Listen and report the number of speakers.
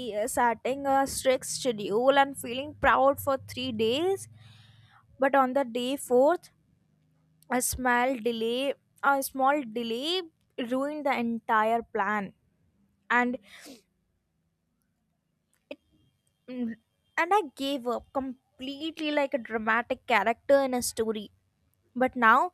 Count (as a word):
one